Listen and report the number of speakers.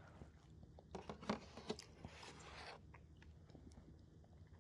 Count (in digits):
0